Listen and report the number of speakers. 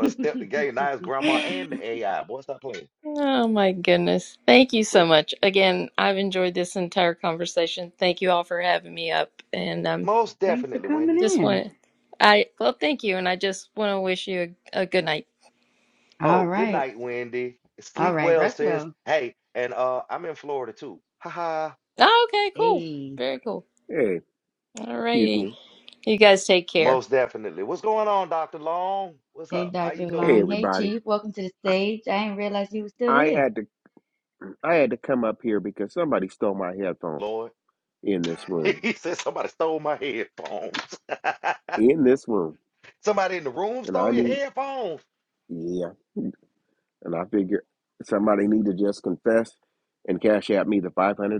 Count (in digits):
4